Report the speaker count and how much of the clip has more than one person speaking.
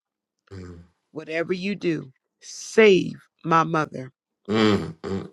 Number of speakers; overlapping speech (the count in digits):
2, no overlap